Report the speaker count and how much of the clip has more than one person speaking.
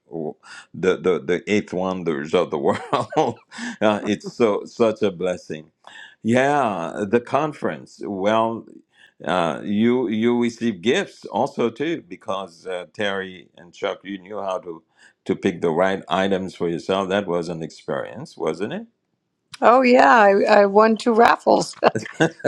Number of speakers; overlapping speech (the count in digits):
2, no overlap